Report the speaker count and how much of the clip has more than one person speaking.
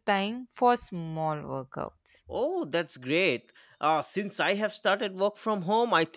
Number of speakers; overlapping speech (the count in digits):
2, no overlap